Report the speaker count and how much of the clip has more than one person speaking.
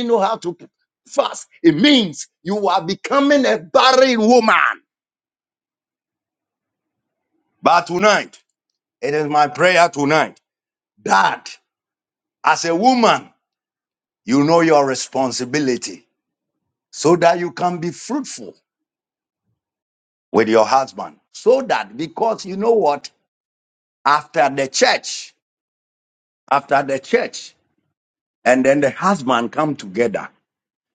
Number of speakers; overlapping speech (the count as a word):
one, no overlap